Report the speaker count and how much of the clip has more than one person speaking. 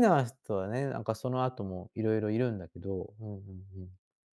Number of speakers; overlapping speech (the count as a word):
one, no overlap